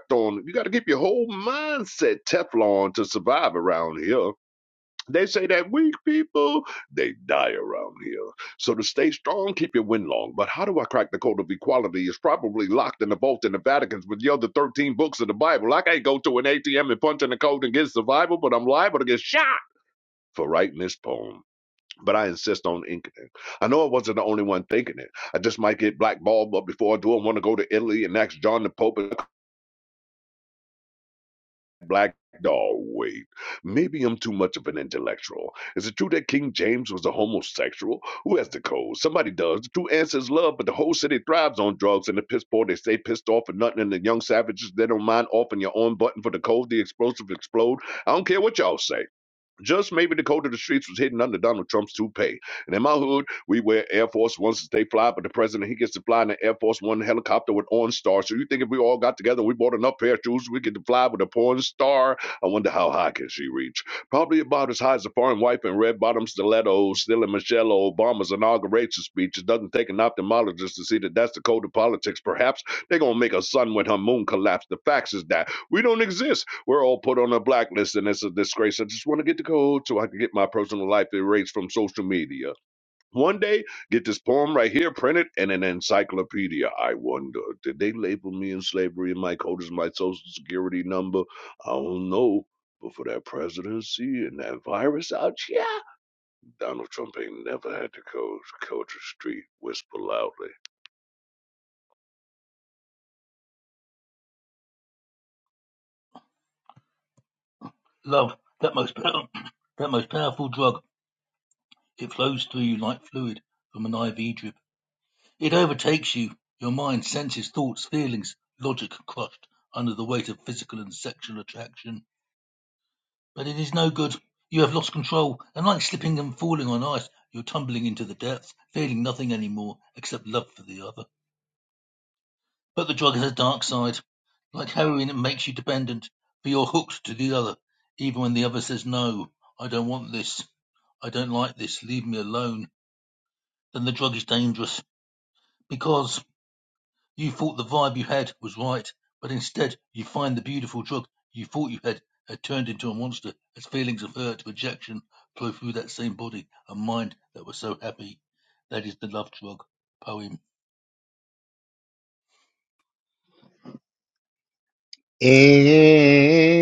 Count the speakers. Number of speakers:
3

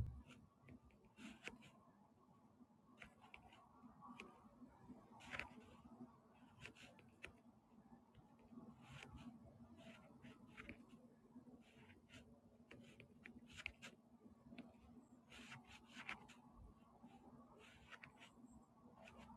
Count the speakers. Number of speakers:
0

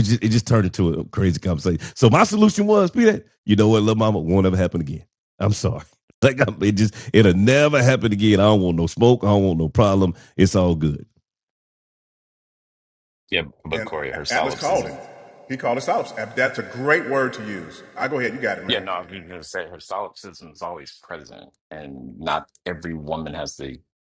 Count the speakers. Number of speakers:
3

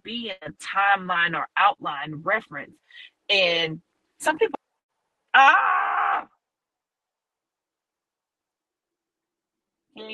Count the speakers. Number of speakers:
1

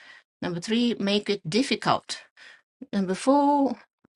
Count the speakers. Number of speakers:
1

